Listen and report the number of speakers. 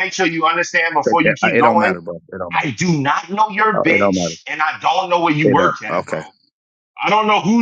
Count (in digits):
2